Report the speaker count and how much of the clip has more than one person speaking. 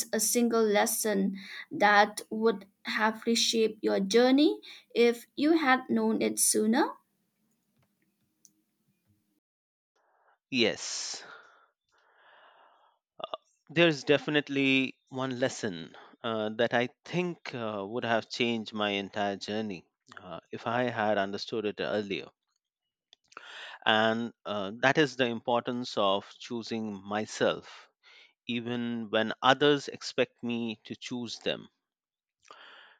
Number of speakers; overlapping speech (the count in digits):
2, no overlap